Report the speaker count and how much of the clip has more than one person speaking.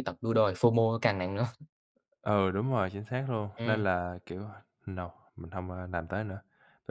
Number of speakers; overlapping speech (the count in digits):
2, about 3%